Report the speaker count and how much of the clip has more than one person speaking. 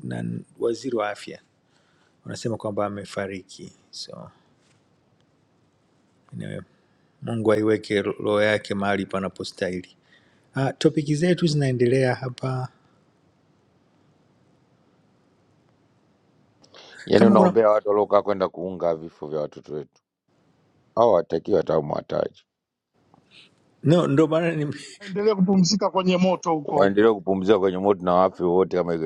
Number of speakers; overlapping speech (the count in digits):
3, about 2%